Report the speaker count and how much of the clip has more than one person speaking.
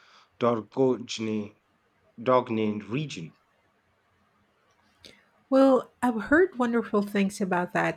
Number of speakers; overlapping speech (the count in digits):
2, no overlap